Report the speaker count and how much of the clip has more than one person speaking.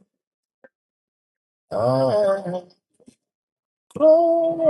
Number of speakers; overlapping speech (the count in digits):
1, no overlap